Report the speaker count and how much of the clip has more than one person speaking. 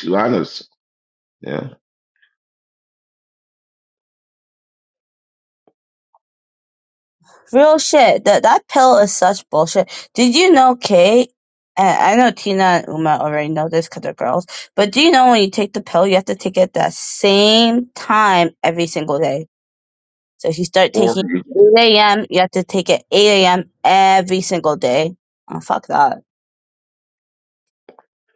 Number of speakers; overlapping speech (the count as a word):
two, about 1%